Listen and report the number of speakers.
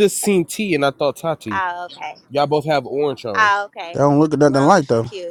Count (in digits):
3